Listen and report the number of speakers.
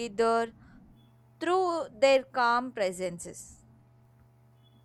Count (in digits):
1